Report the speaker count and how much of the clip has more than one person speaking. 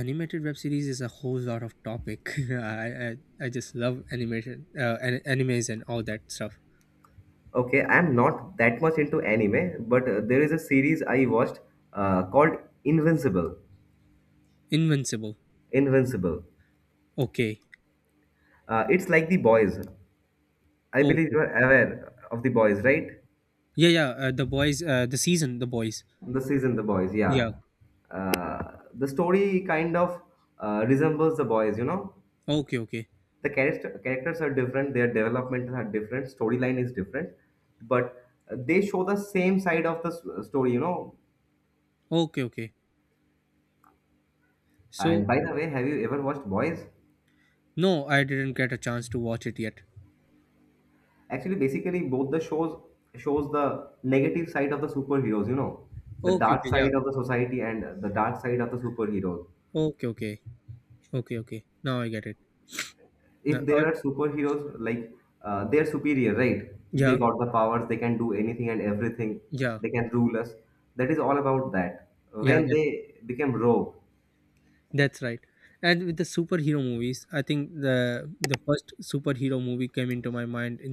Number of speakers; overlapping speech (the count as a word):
two, about 3%